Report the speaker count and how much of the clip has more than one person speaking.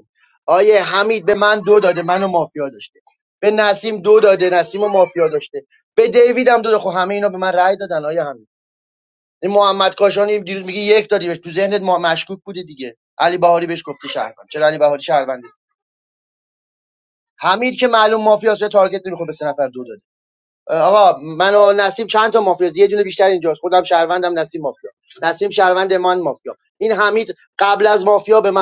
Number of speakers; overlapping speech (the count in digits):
1, no overlap